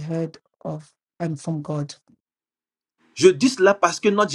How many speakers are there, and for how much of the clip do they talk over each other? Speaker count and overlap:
2, no overlap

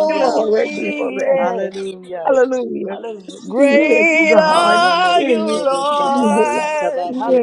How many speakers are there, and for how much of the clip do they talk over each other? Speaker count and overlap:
3, about 61%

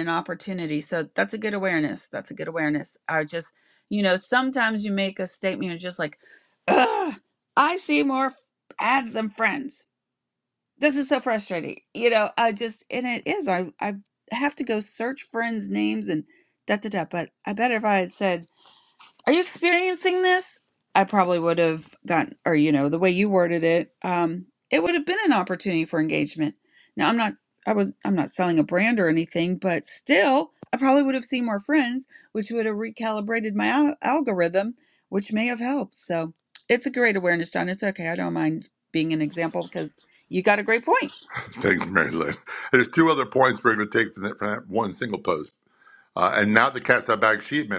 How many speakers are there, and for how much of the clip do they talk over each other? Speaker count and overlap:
2, no overlap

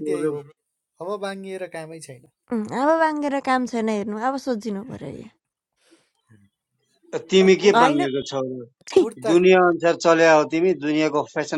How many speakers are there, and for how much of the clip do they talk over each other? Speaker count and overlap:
3, about 11%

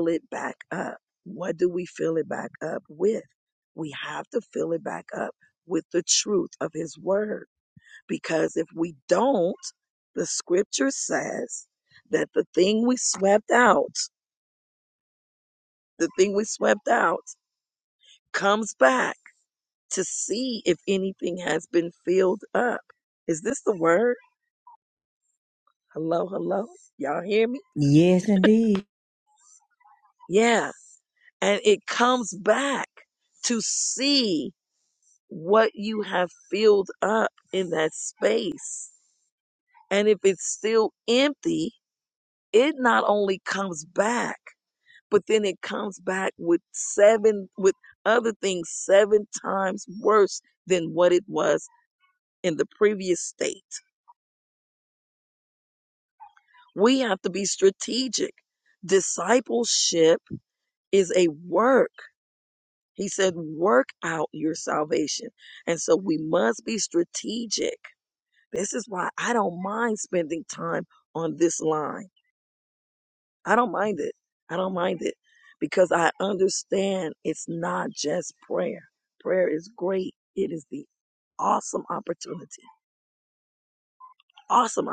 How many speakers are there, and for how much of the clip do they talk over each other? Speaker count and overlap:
2, no overlap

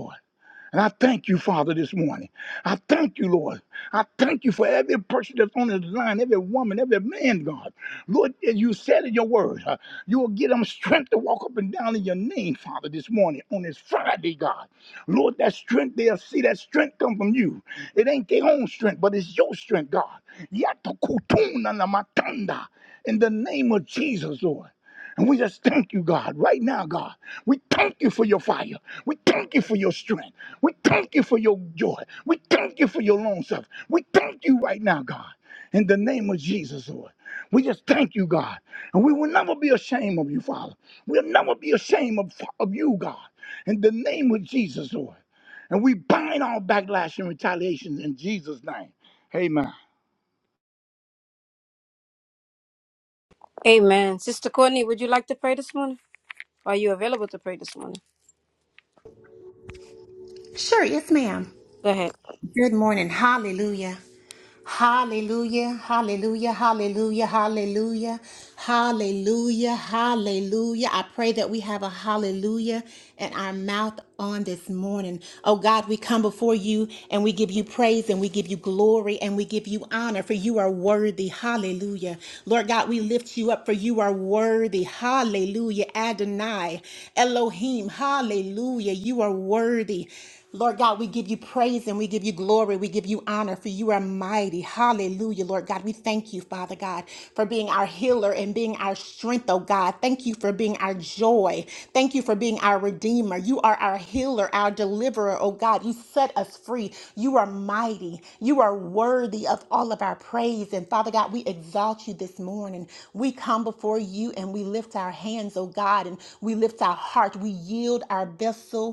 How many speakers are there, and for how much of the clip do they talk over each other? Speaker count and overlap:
3, no overlap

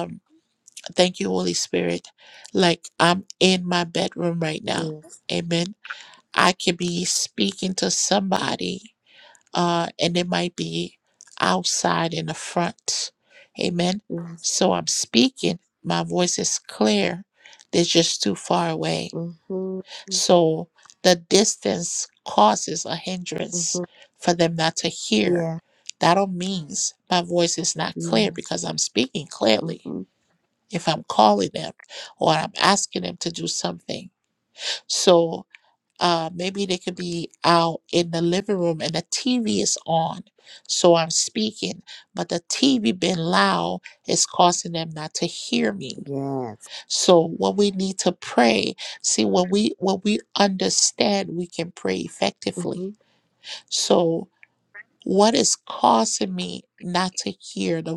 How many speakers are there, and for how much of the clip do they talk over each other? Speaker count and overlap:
2, about 2%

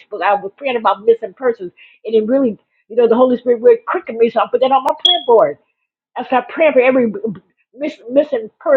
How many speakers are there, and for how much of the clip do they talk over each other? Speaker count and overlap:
1, no overlap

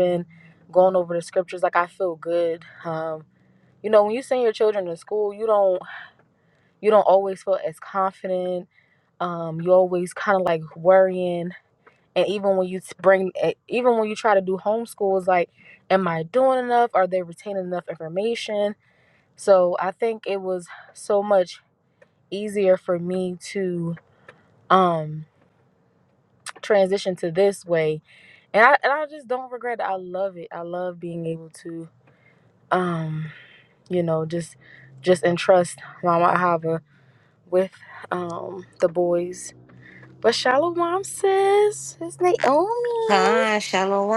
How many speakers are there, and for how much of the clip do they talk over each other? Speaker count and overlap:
2, under 1%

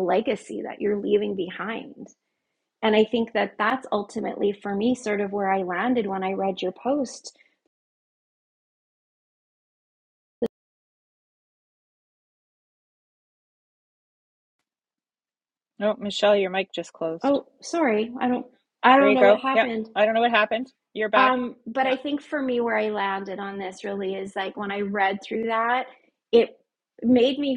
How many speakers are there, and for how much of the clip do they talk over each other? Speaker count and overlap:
2, about 5%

